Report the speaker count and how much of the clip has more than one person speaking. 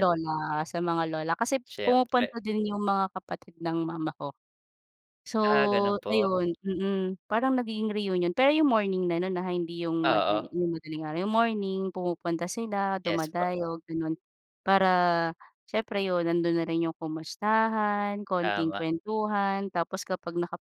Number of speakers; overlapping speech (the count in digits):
2, about 11%